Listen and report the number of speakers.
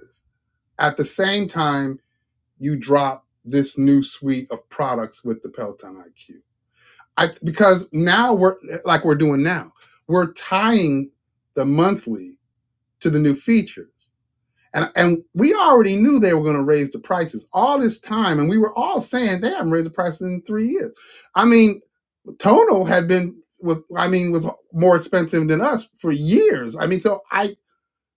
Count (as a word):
one